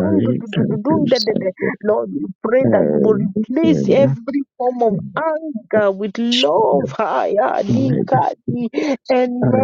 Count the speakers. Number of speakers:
2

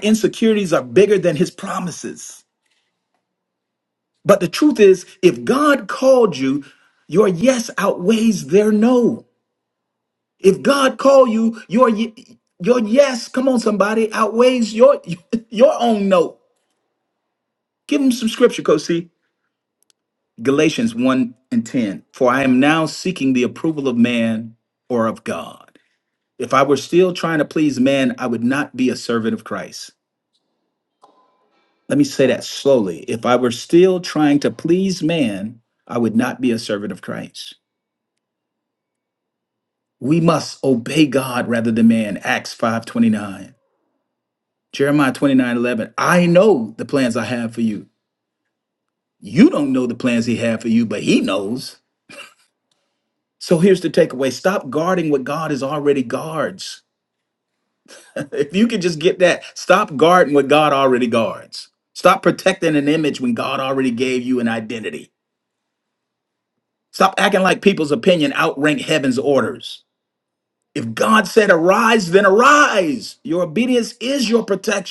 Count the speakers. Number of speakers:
1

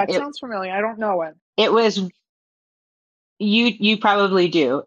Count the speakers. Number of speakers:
2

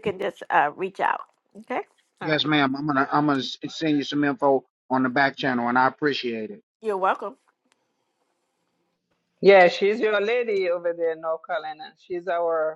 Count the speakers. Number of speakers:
3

